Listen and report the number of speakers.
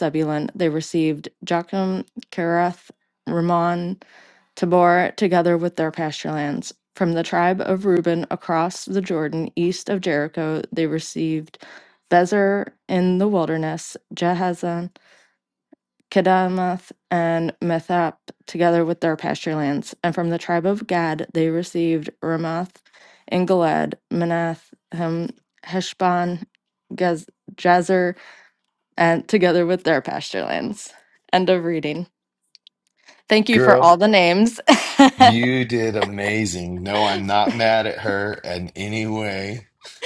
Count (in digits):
2